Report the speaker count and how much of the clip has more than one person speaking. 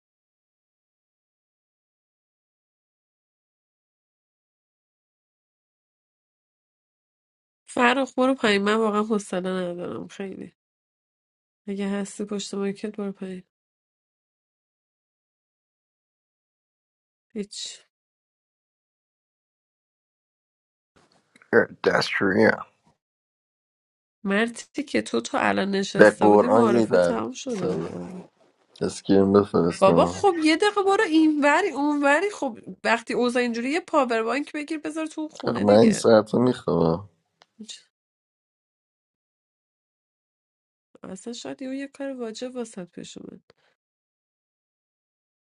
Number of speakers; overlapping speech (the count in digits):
2, about 6%